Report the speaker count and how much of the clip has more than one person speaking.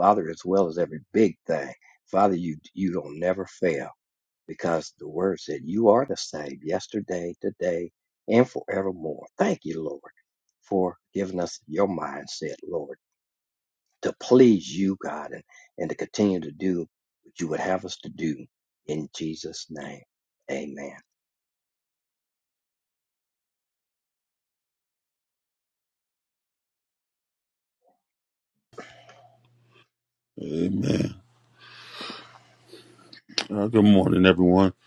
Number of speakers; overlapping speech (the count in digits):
2, no overlap